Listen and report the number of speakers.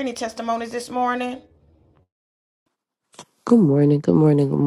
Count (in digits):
2